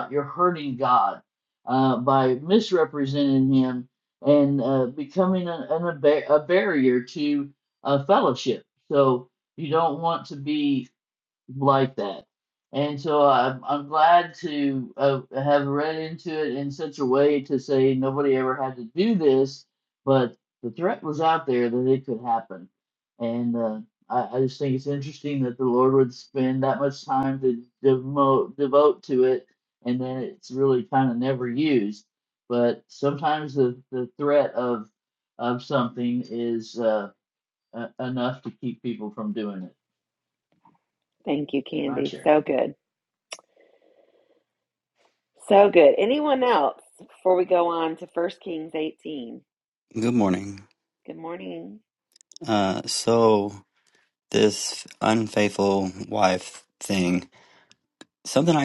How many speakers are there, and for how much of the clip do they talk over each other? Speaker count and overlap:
3, about 1%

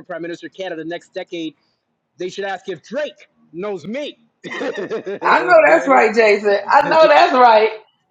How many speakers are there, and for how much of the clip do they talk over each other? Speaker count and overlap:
2, about 8%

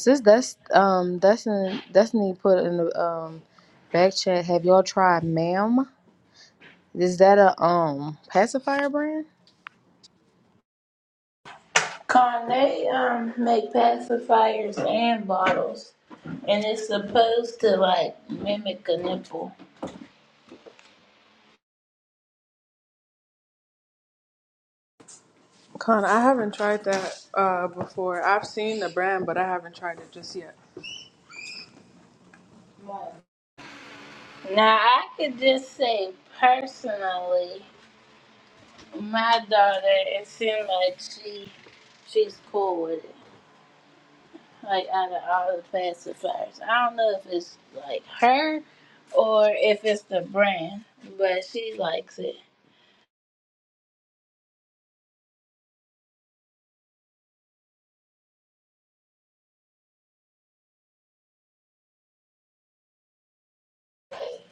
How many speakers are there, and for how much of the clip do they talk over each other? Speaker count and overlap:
3, no overlap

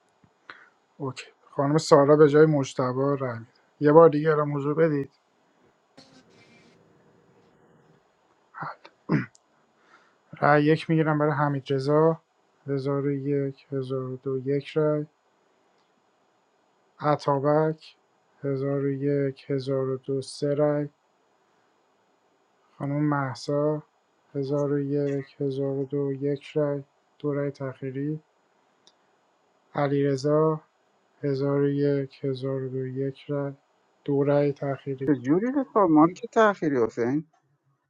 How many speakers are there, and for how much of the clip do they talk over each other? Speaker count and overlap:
2, under 1%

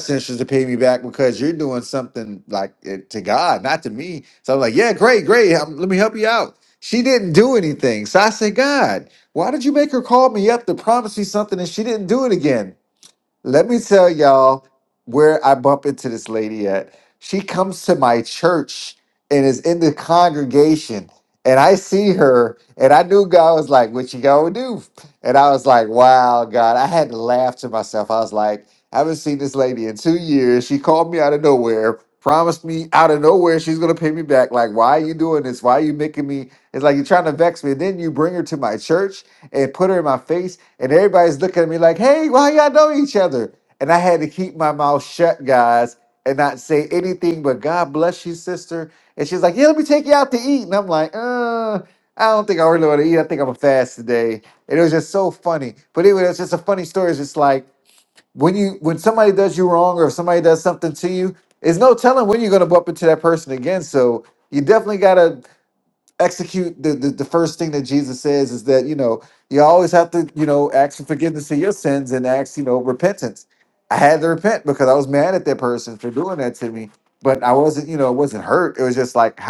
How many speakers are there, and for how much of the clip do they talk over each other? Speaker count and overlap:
1, no overlap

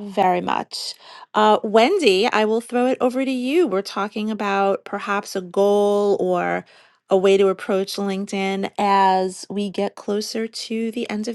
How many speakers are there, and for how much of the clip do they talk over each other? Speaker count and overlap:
1, no overlap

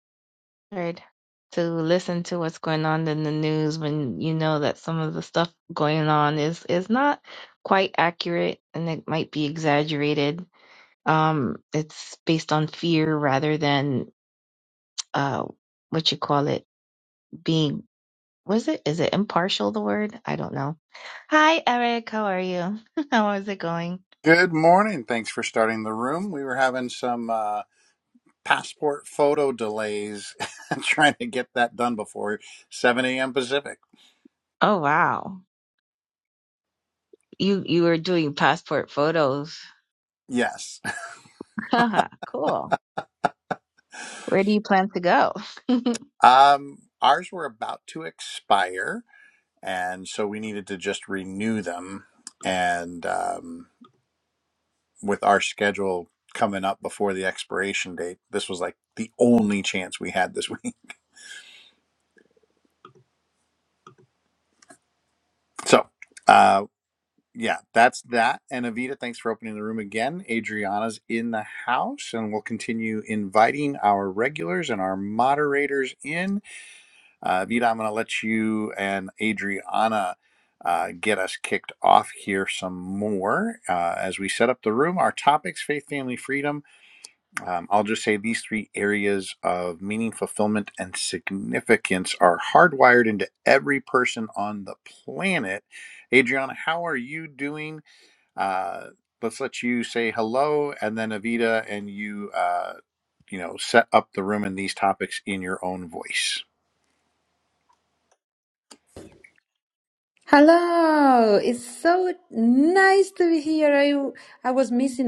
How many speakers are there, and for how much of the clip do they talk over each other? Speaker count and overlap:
3, no overlap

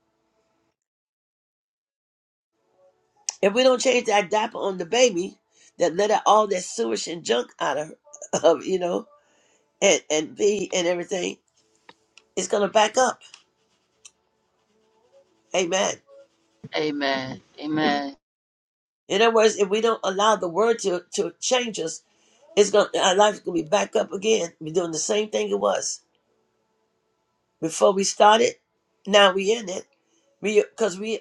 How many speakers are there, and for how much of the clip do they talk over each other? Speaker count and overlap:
2, no overlap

